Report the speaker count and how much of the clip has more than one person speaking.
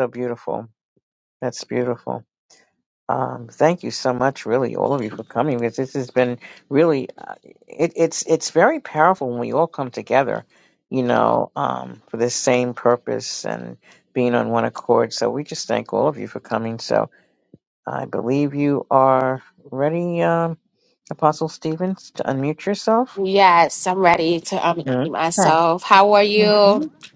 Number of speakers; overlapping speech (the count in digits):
2, about 4%